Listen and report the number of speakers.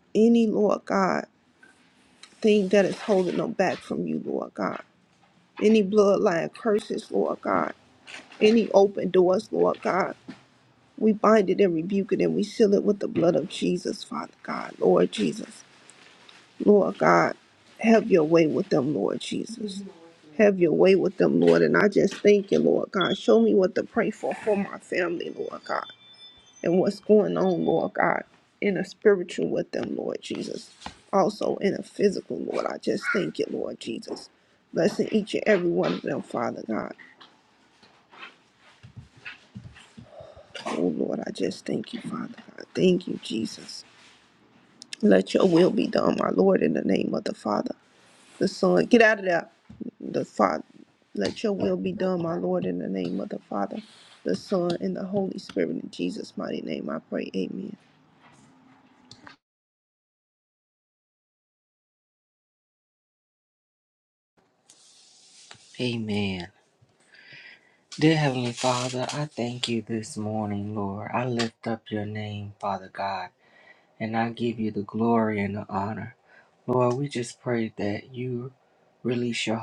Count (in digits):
2